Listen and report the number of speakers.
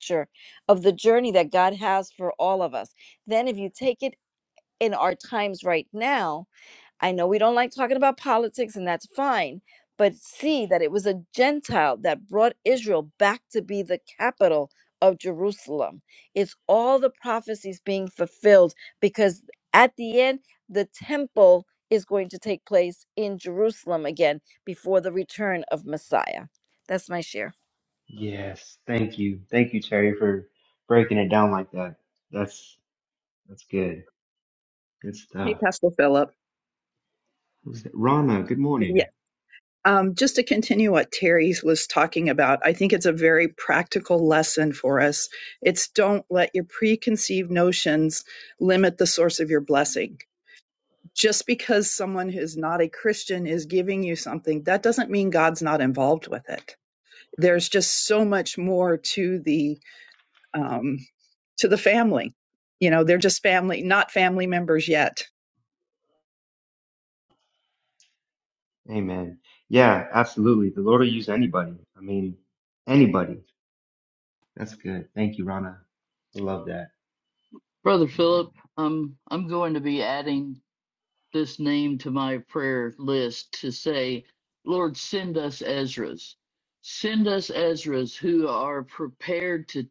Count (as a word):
four